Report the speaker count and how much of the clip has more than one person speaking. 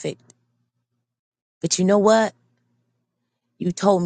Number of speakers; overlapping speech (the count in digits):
1, no overlap